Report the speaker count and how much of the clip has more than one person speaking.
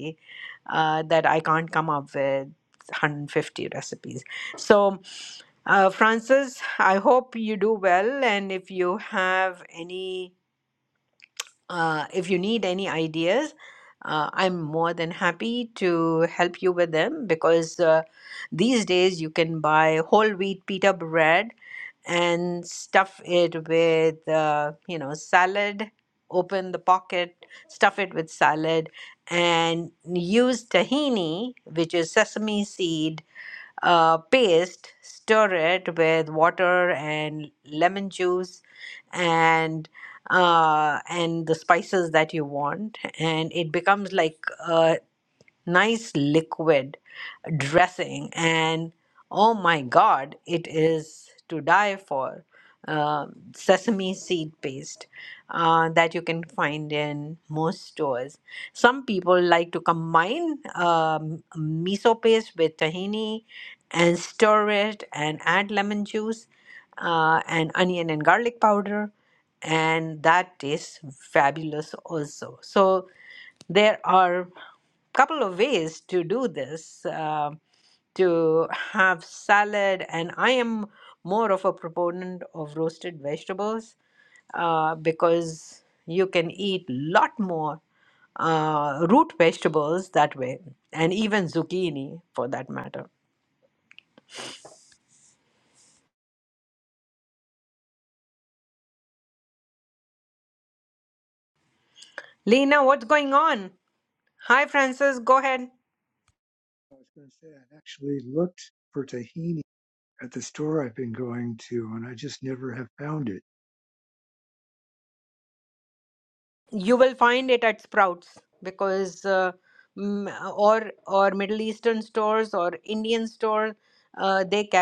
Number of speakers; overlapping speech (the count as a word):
two, no overlap